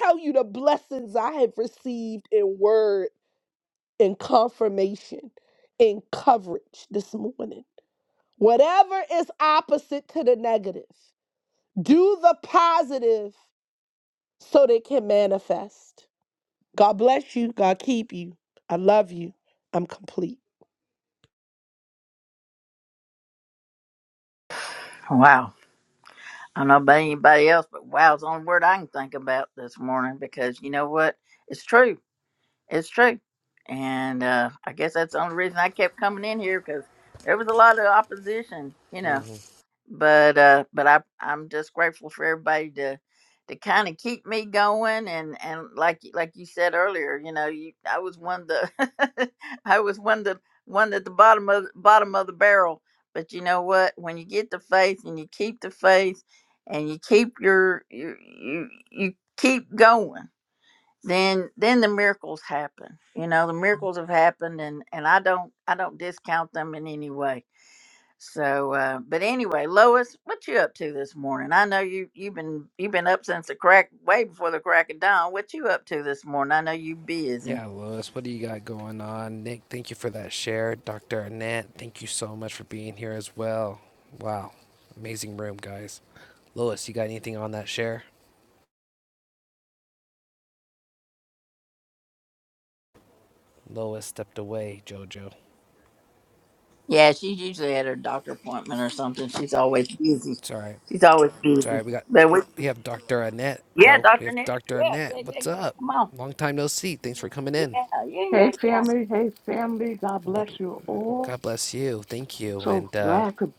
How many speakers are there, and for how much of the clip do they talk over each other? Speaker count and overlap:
four, about 4%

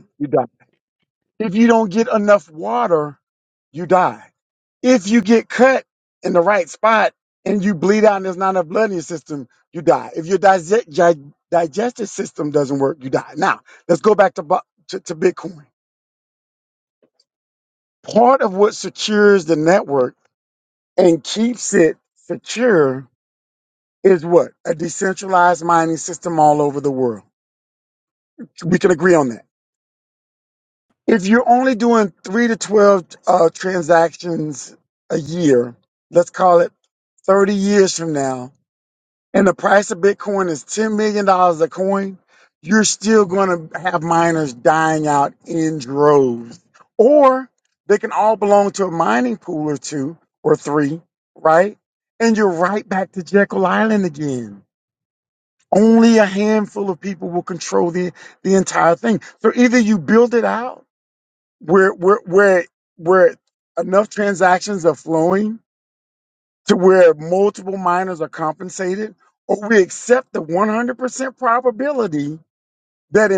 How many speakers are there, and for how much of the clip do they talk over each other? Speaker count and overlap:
one, no overlap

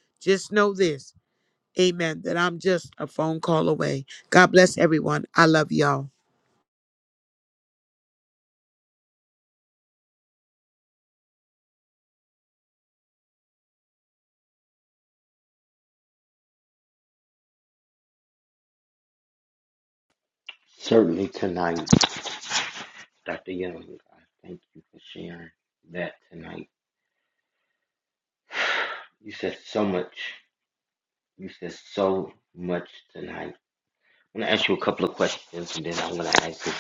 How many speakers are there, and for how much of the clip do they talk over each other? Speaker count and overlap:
two, no overlap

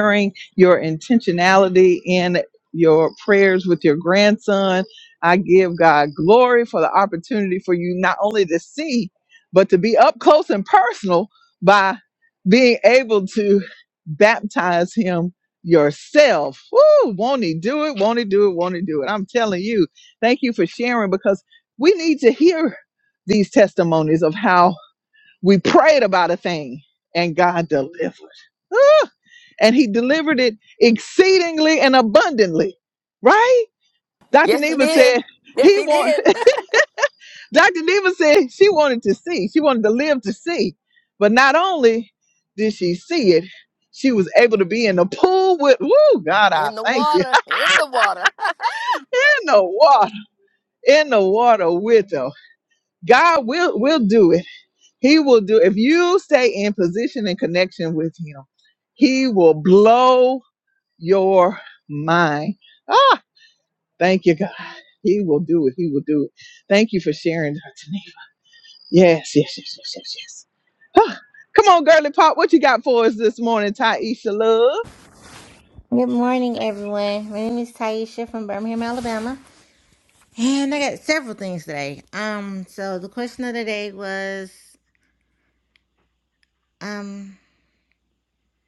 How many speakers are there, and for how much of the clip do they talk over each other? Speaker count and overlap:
three, about 2%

